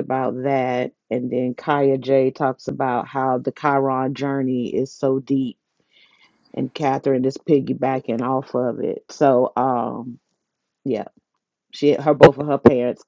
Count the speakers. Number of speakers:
one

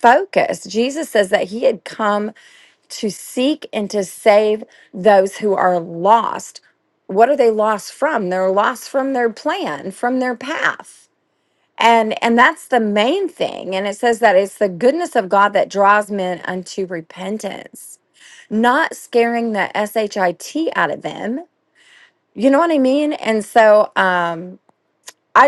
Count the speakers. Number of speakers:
one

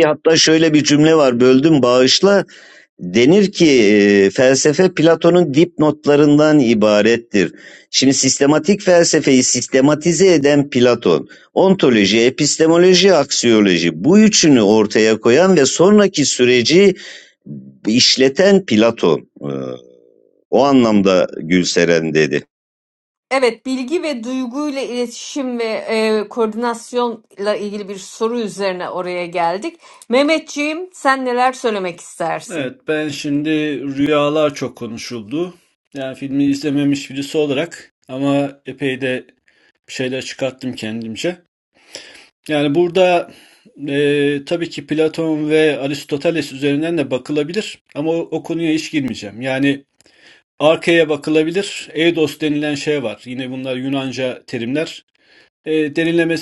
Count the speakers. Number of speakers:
three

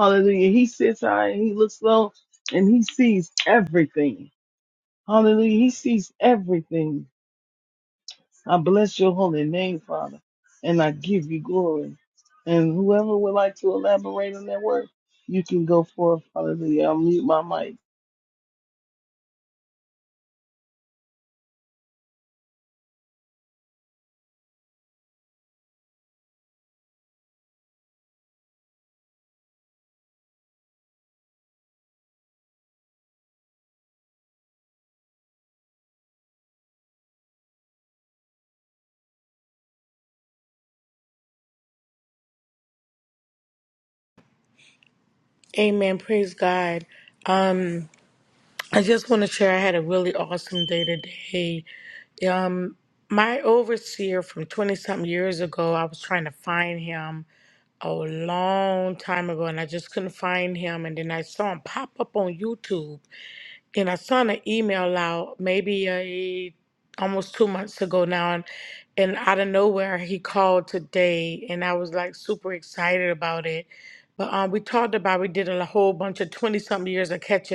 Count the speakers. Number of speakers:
two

